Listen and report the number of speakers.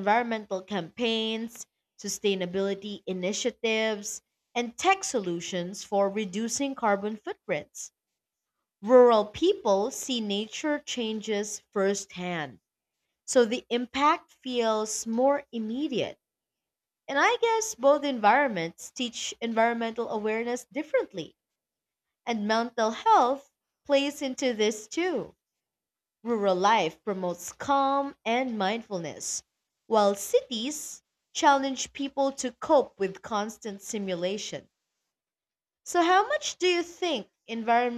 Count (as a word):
one